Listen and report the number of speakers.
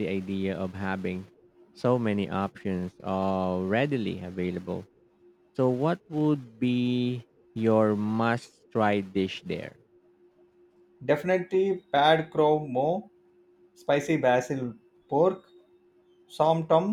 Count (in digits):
2